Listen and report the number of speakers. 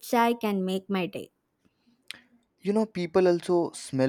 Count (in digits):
2